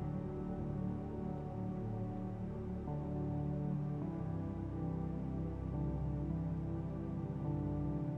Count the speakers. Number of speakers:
zero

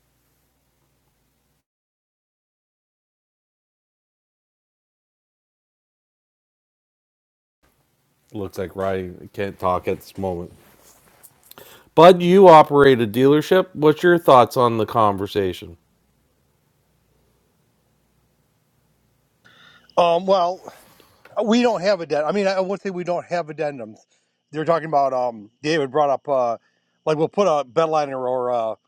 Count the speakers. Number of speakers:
two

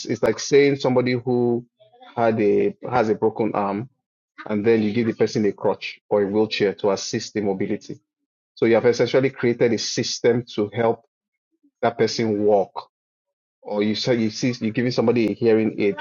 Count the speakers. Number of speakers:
one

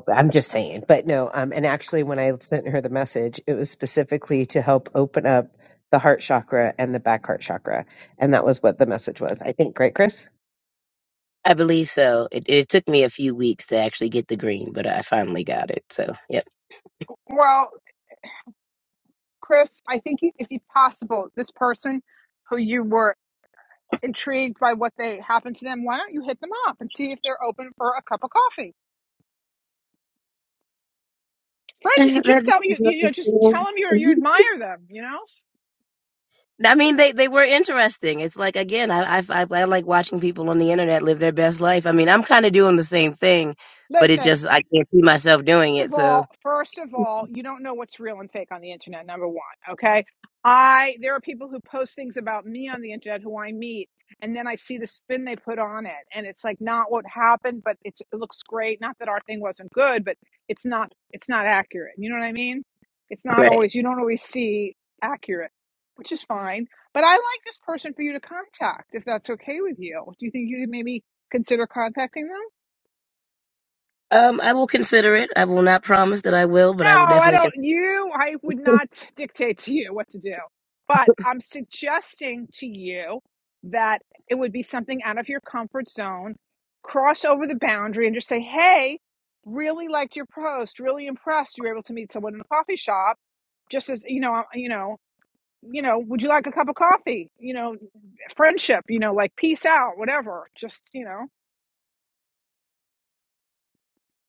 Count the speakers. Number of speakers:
three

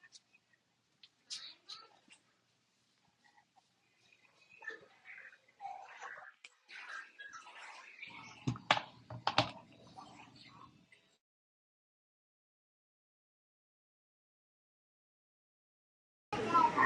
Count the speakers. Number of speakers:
zero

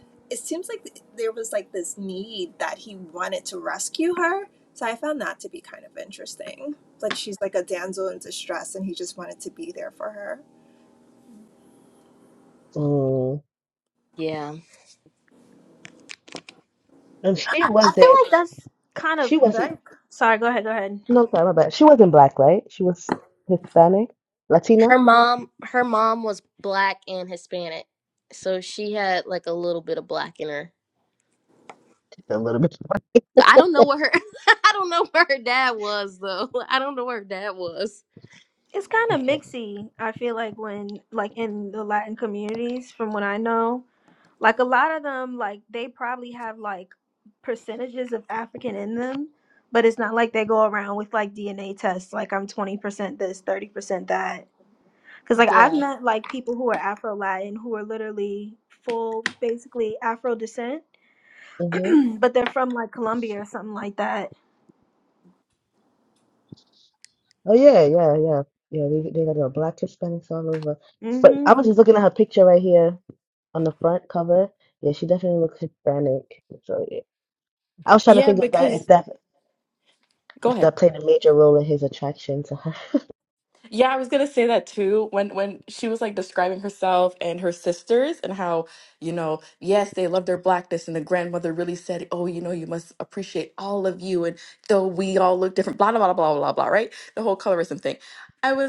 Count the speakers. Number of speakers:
five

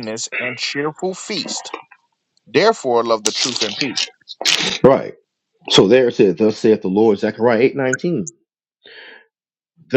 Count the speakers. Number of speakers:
two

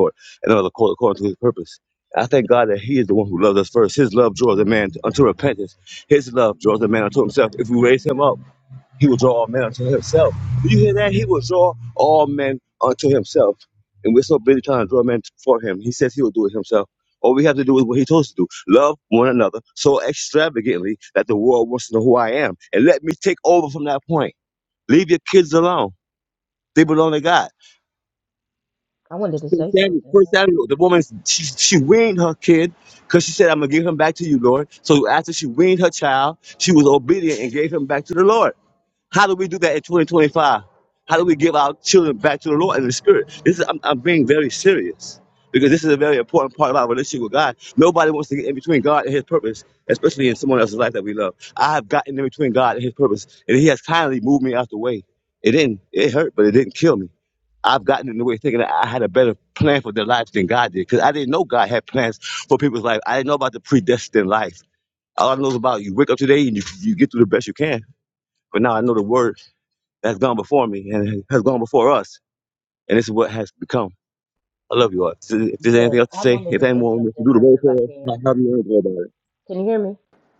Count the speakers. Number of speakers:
two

